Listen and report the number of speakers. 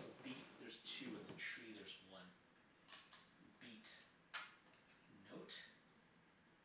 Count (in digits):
1